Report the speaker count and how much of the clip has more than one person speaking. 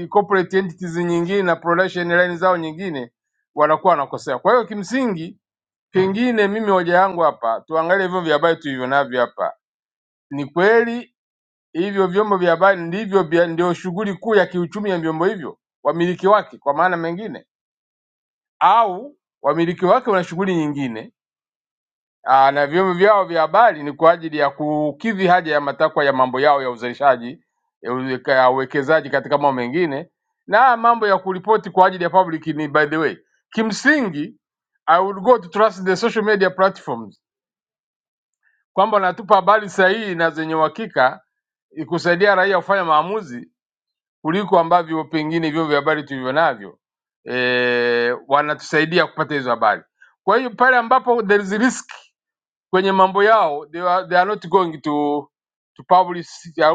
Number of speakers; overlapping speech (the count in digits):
1, no overlap